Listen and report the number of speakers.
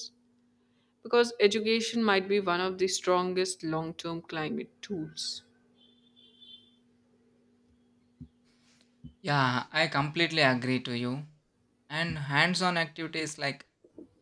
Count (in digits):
2